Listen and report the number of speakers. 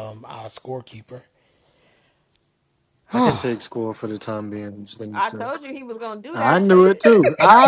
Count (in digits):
3